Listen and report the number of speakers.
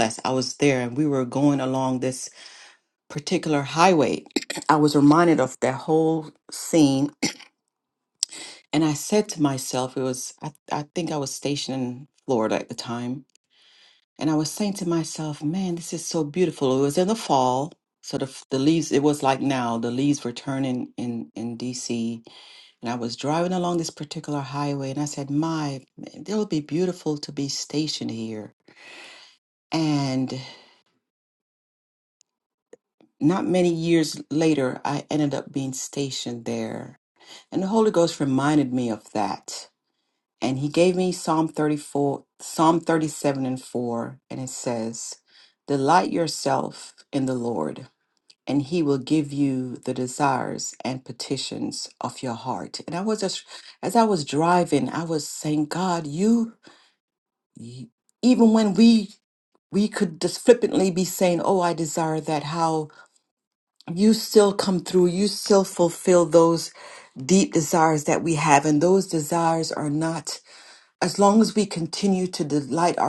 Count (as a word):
one